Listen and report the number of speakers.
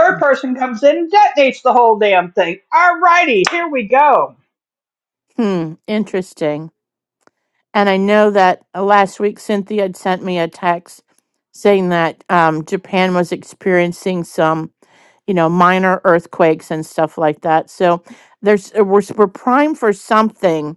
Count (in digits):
2